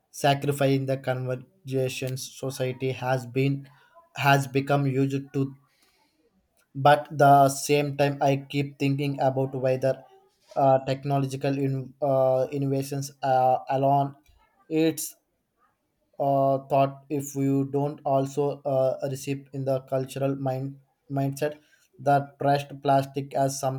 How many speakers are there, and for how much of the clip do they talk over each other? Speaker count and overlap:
1, no overlap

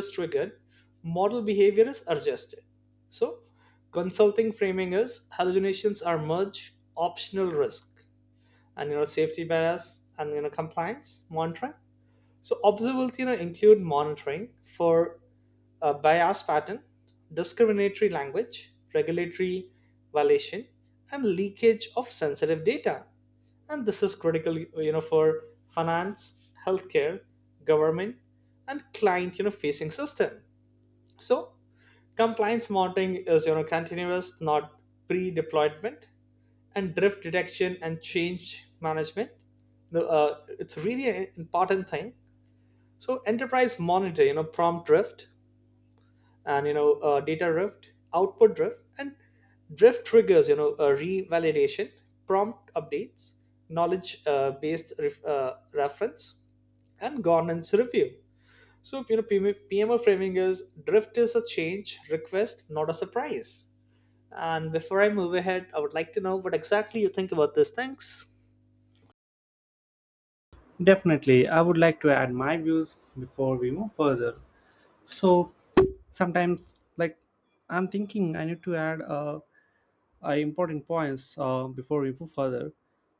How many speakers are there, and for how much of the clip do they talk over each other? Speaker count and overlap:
2, no overlap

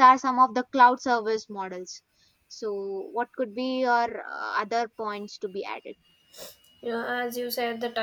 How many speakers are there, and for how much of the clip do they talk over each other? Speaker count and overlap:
2, no overlap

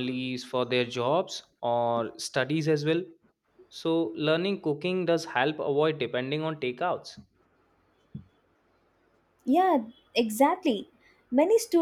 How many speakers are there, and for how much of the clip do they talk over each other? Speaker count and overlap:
2, no overlap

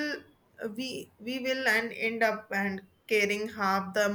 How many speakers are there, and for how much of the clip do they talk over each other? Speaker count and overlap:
1, no overlap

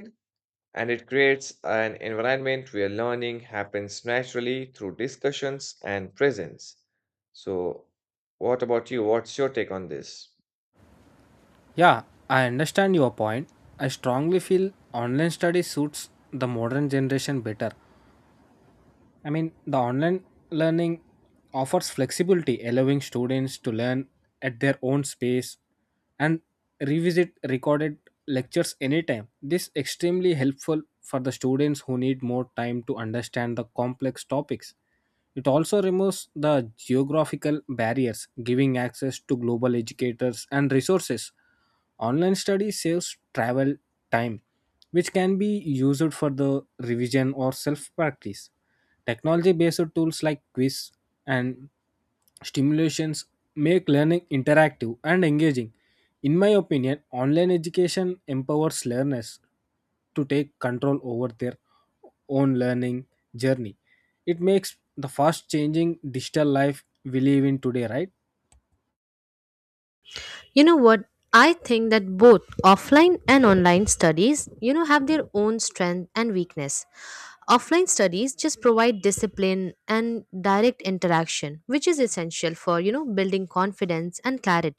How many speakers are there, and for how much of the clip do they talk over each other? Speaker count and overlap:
3, no overlap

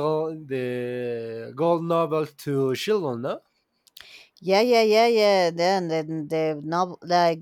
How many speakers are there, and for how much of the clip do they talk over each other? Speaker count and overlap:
2, no overlap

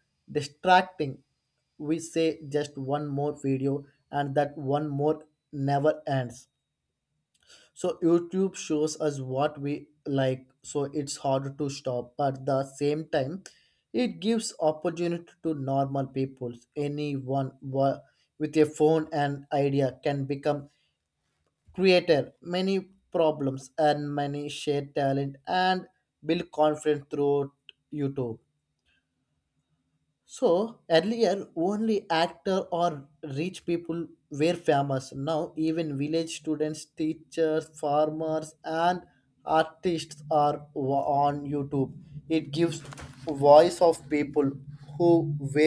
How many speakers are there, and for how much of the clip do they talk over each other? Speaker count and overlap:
1, no overlap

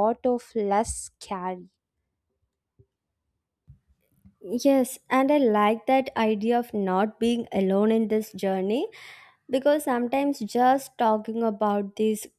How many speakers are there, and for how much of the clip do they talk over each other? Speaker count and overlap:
2, no overlap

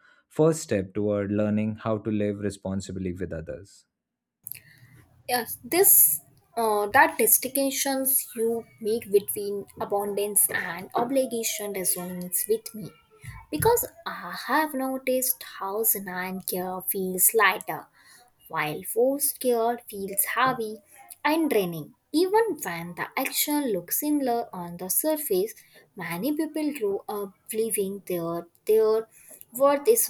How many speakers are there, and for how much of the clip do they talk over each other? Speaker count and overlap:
2, no overlap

